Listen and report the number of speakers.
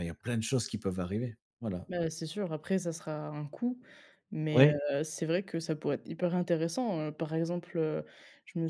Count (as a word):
two